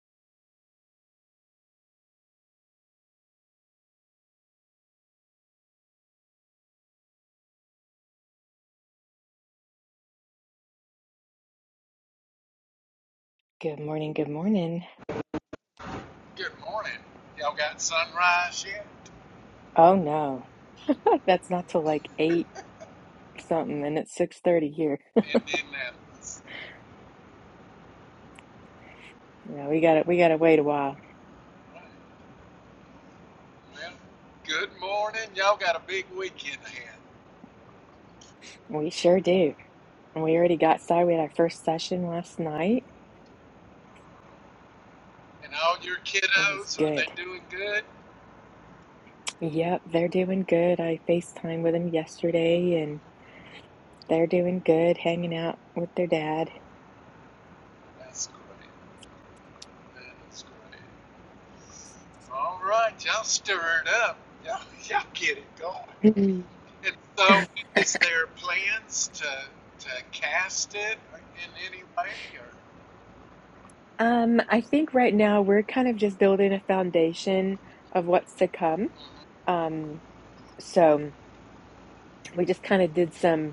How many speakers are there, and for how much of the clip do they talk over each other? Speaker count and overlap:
2, about 1%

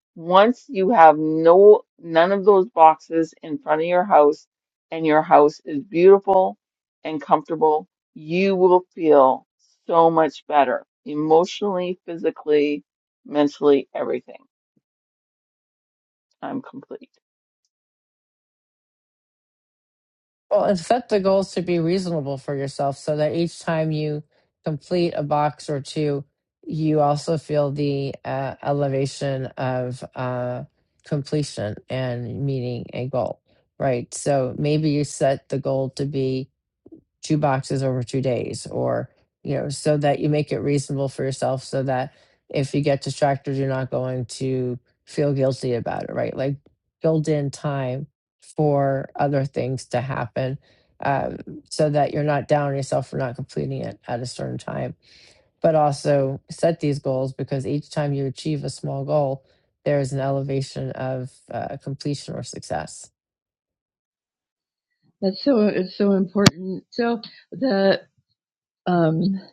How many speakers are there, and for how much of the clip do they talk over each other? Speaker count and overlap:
3, no overlap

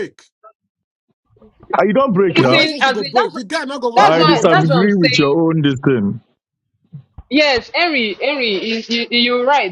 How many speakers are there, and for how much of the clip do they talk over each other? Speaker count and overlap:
3, about 25%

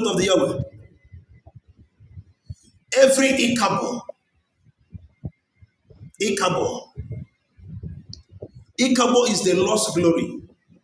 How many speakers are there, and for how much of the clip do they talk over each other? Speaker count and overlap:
1, no overlap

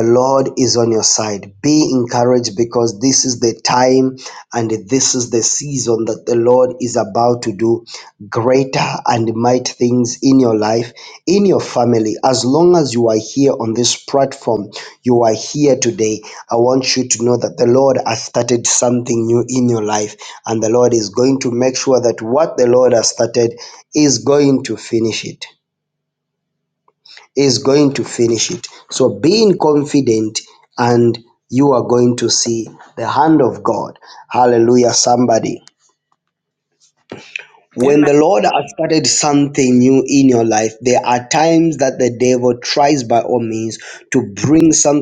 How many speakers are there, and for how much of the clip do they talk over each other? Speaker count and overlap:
1, no overlap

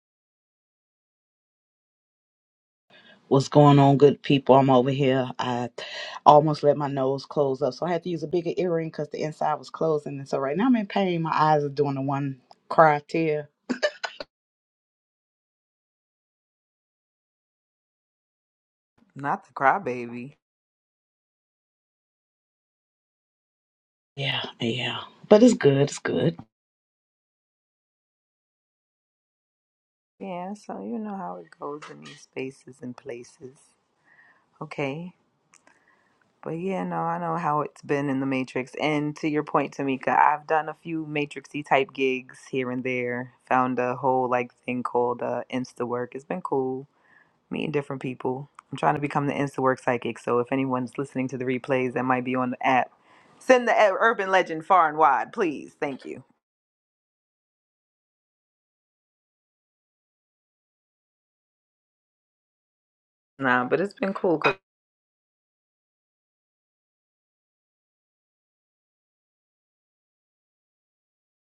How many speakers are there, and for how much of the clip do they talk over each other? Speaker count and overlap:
2, no overlap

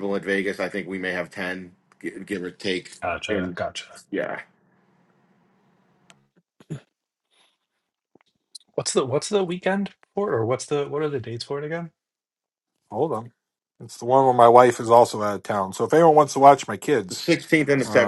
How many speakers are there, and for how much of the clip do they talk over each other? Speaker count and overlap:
3, about 3%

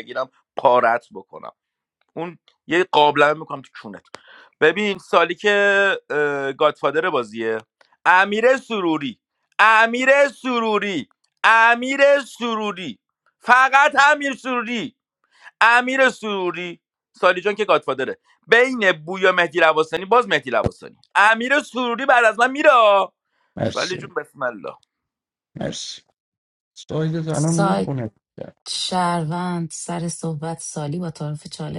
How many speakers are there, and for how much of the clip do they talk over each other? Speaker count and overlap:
3, about 2%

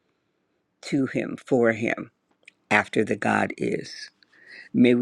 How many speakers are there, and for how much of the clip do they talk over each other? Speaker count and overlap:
1, no overlap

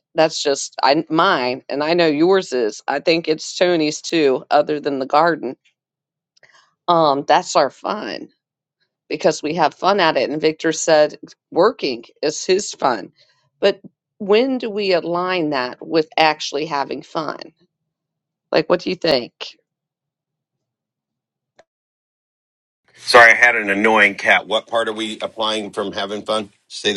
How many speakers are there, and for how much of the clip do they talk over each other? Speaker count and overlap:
2, no overlap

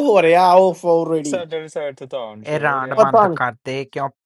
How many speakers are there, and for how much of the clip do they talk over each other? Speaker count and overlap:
3, about 24%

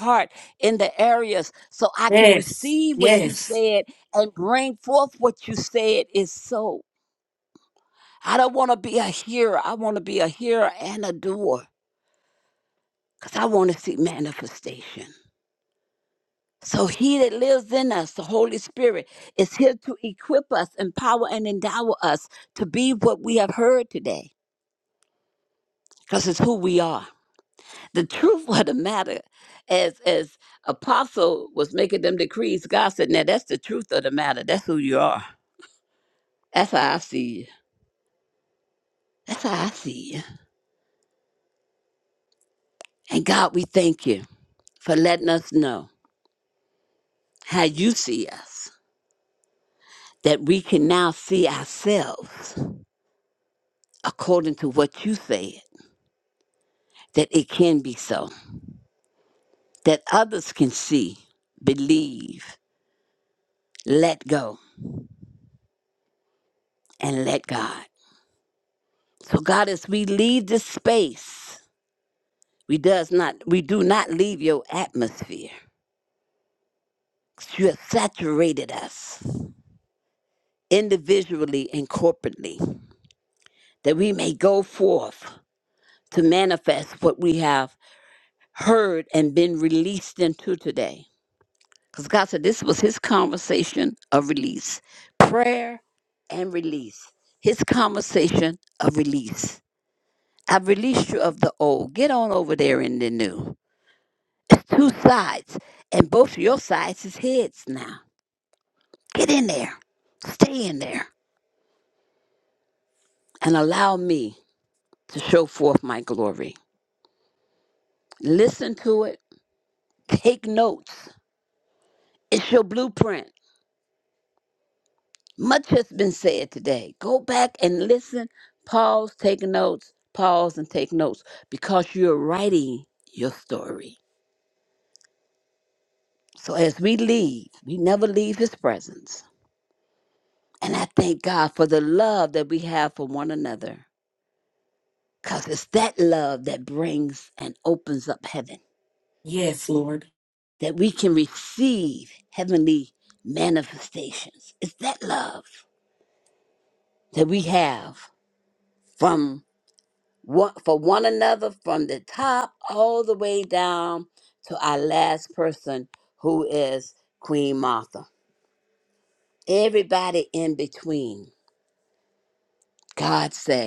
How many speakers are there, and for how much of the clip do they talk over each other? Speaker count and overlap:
2, under 1%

